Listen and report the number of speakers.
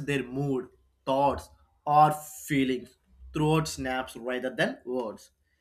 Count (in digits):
1